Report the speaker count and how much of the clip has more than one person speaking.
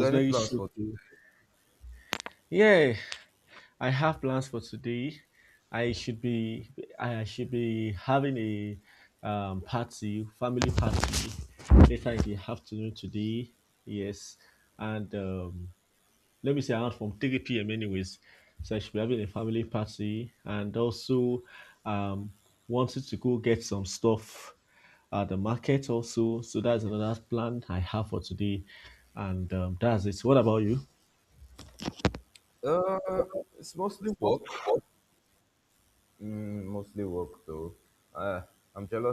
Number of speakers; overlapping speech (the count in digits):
2, about 2%